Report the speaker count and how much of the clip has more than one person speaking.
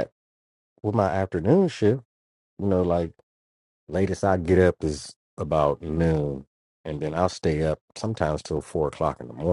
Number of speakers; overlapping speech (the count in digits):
1, no overlap